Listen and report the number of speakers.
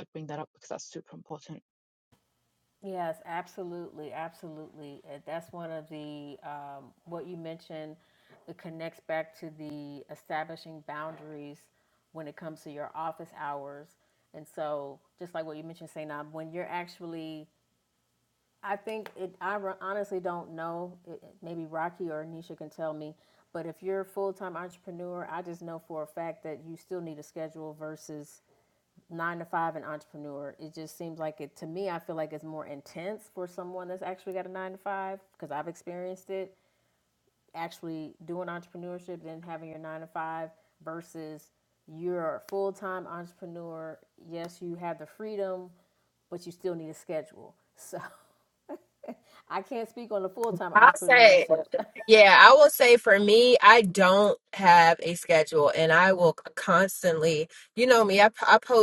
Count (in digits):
3